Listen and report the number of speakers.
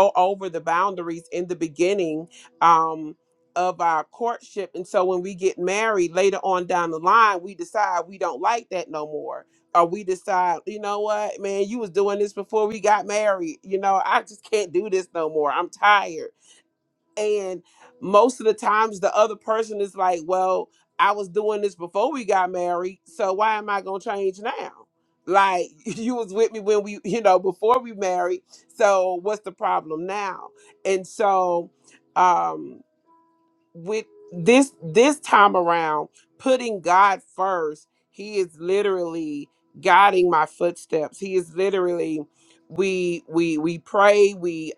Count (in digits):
1